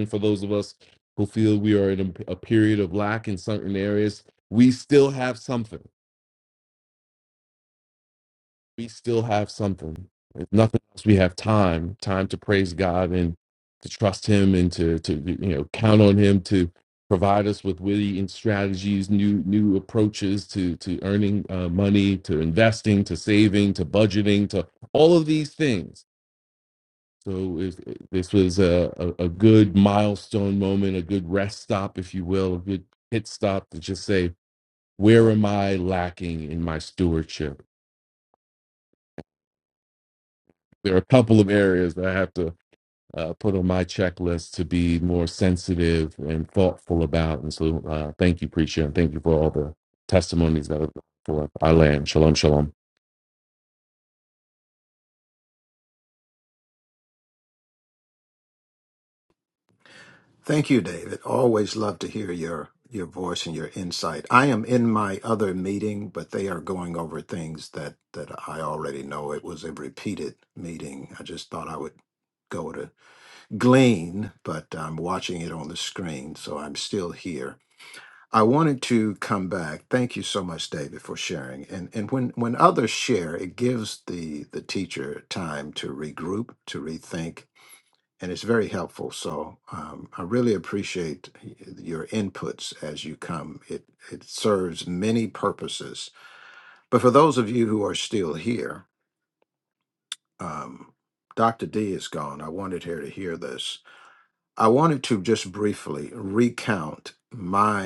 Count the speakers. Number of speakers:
2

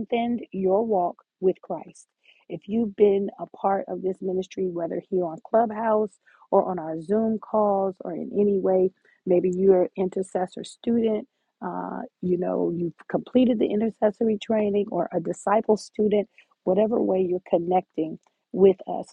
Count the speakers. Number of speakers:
1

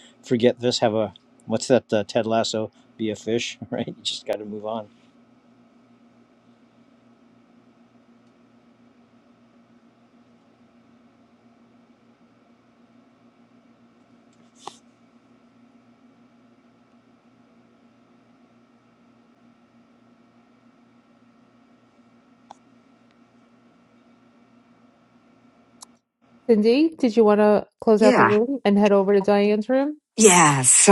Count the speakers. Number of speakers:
3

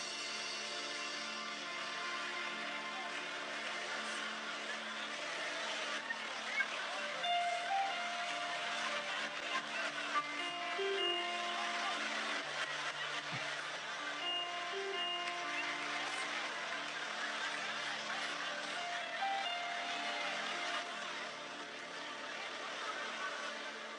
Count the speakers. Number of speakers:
0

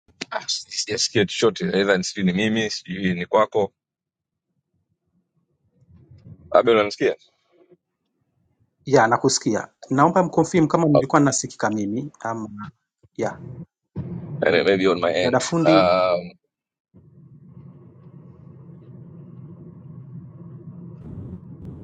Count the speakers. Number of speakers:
2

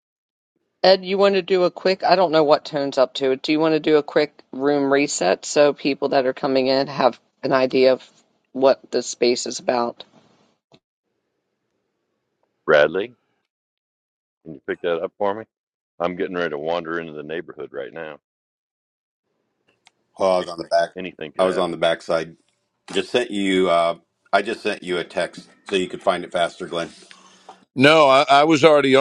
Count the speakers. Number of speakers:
4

